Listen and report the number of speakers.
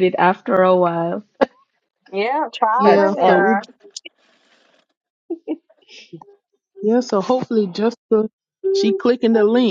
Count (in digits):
3